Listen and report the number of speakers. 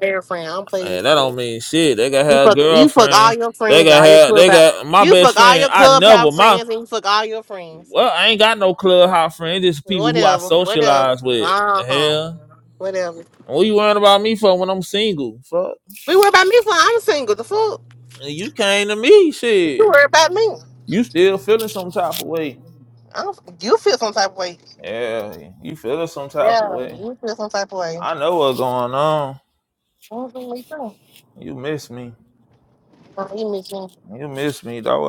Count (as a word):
two